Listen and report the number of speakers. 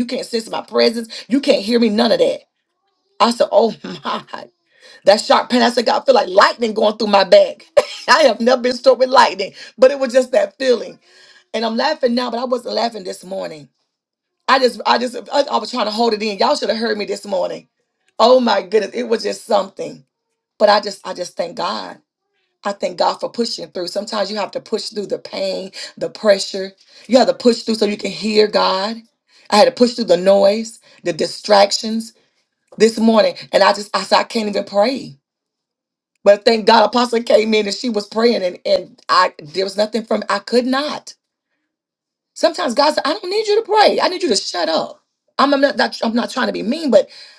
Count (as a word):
one